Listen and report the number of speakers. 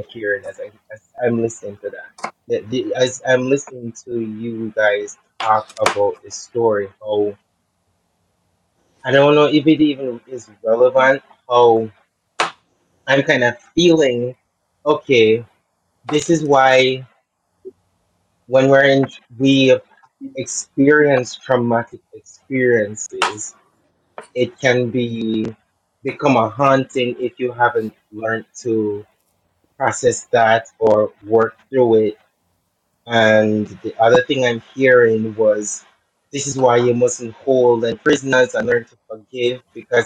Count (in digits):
1